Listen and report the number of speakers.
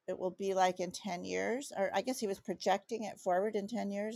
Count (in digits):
1